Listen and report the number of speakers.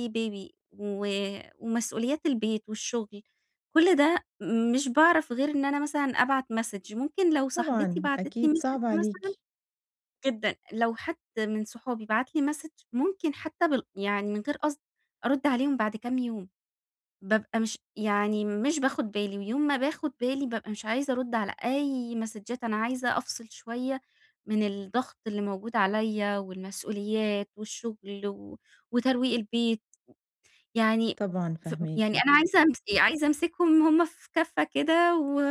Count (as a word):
two